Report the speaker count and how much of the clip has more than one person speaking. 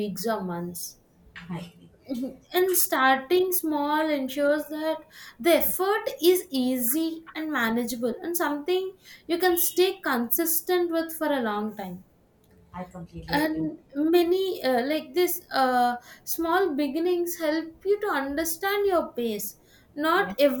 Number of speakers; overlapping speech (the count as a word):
two, about 3%